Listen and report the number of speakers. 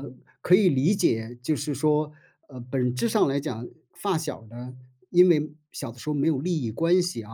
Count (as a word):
one